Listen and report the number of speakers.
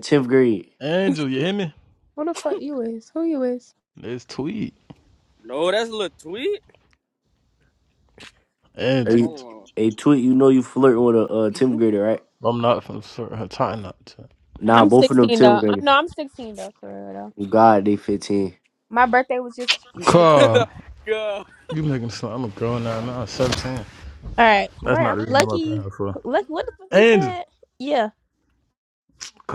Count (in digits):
5